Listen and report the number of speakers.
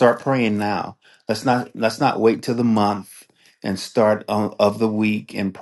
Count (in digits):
1